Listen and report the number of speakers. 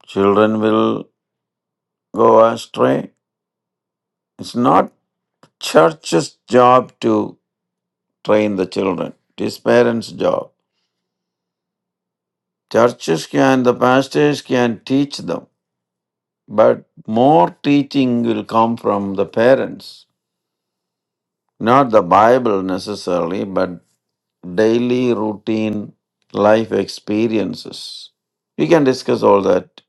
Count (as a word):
one